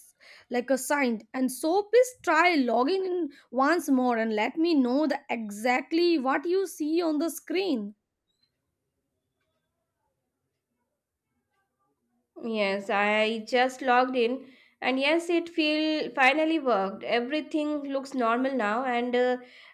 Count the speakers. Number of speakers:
2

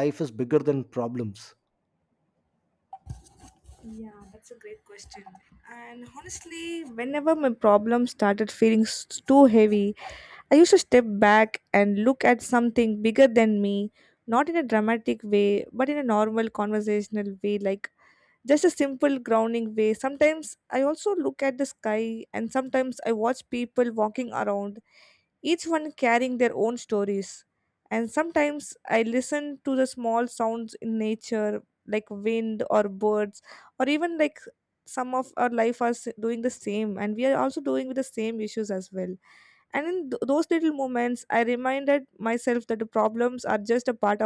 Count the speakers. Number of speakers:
2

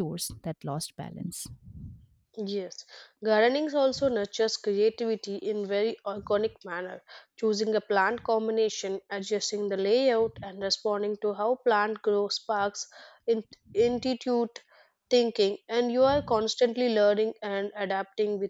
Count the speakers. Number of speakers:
2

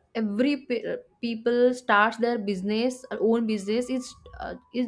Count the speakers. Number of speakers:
1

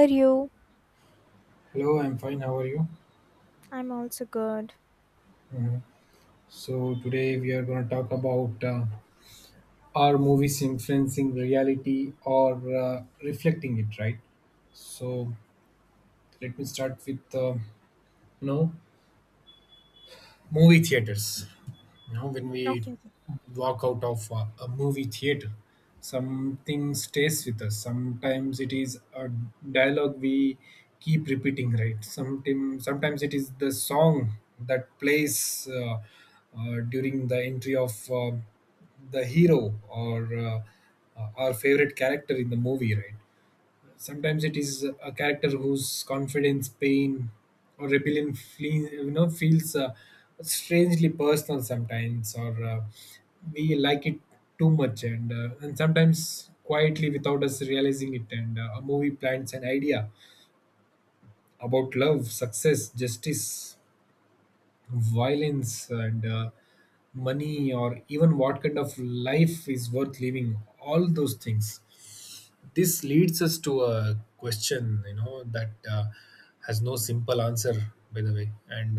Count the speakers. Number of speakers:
2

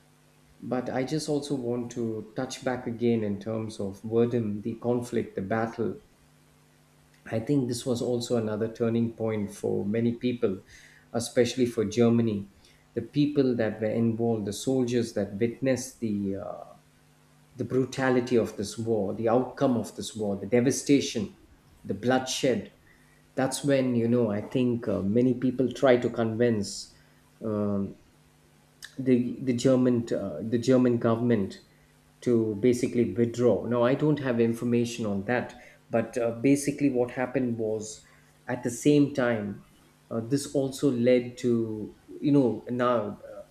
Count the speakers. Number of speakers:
1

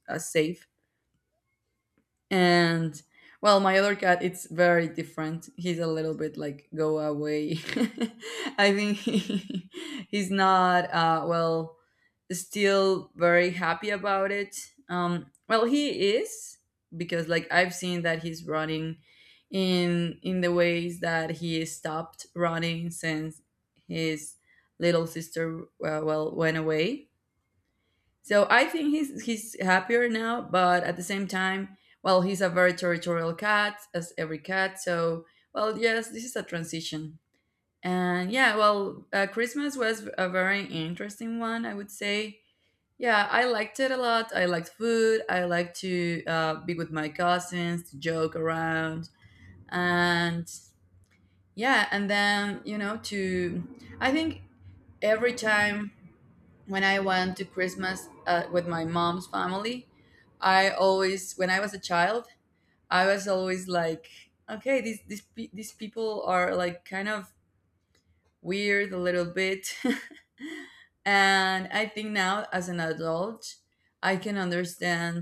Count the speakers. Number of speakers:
1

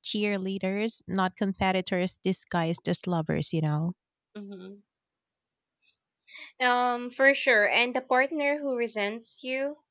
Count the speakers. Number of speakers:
2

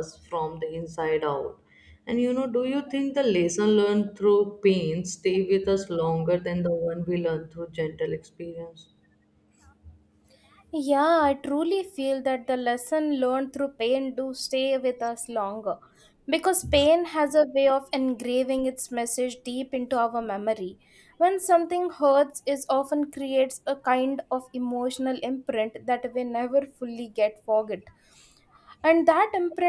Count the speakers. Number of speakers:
2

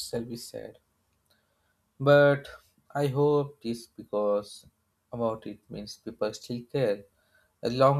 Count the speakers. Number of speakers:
1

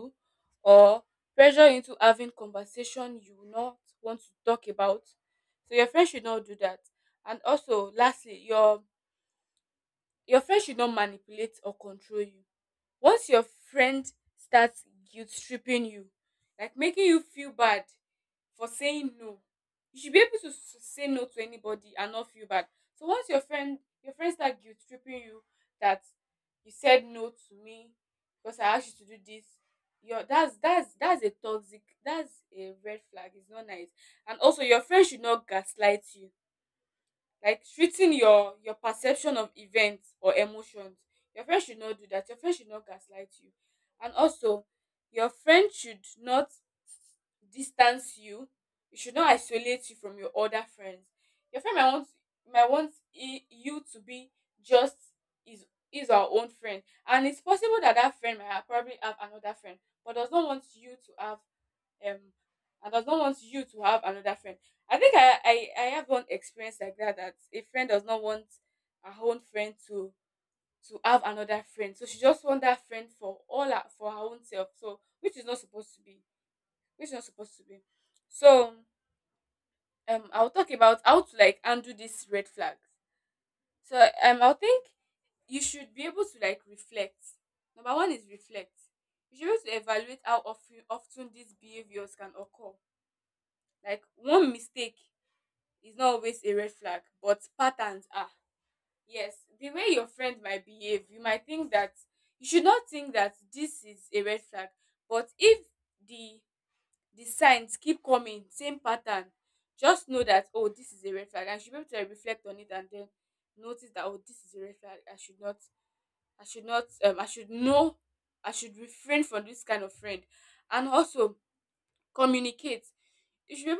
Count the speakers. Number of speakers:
1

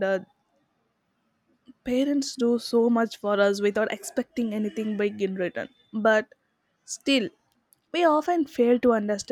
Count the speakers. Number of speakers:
1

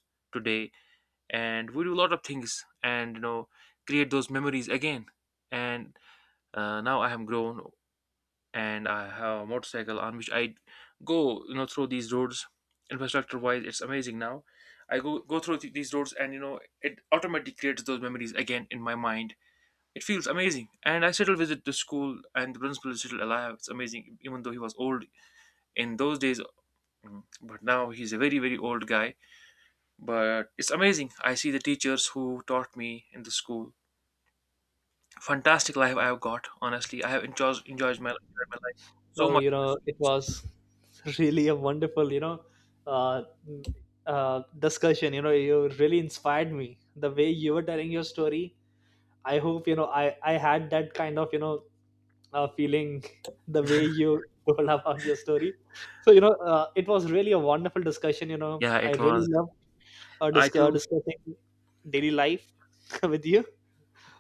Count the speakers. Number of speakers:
2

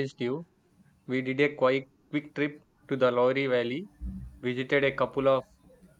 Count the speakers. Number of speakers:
1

